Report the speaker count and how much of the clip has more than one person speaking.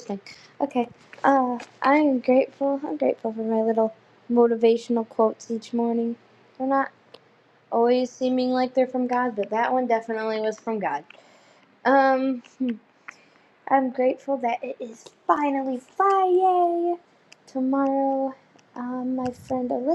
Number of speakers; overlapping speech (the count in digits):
1, no overlap